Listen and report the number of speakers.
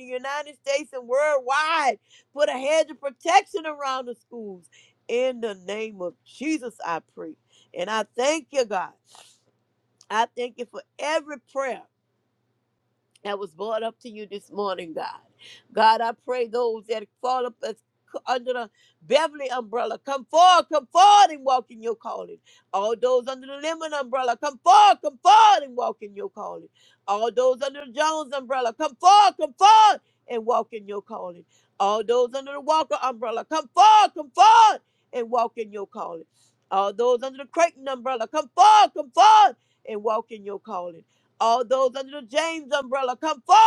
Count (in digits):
1